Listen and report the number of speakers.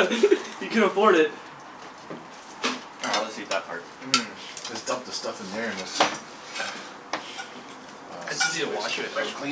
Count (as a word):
three